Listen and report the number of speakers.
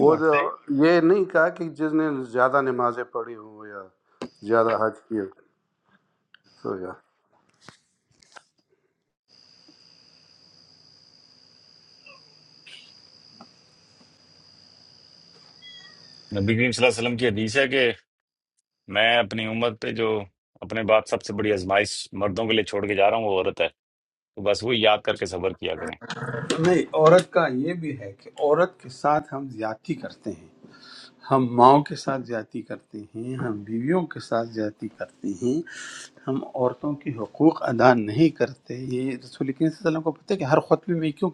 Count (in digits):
3